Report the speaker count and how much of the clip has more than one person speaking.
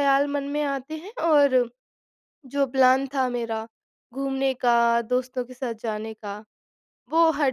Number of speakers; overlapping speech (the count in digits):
1, no overlap